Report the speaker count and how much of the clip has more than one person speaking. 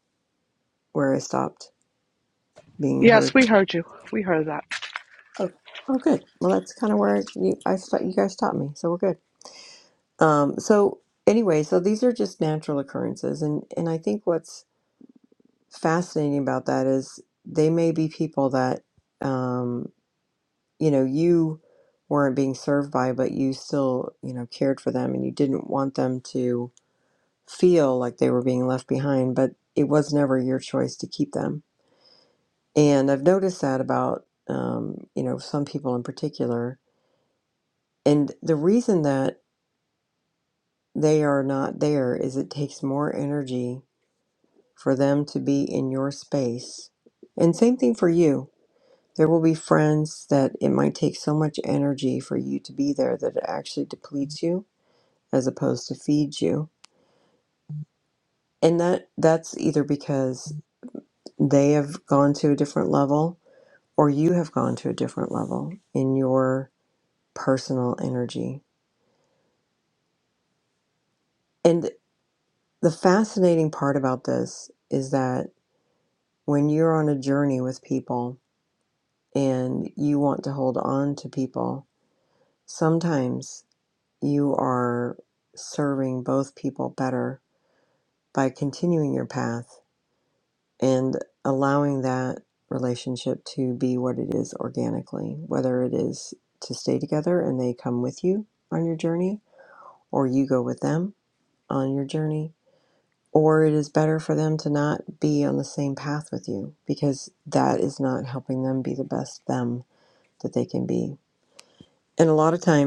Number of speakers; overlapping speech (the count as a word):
two, under 1%